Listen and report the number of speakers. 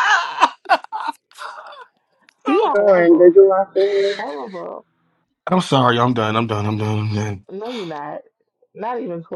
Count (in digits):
3